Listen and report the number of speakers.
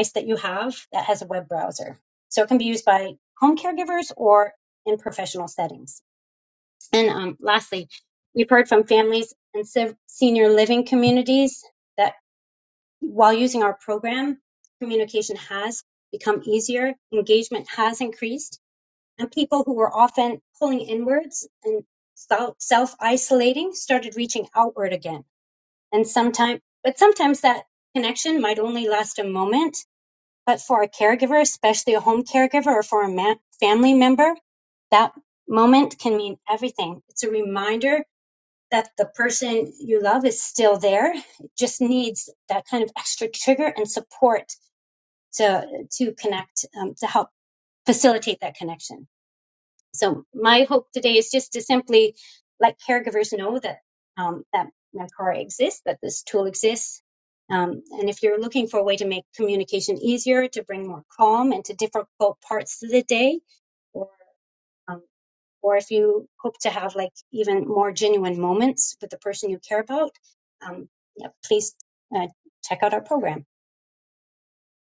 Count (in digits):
1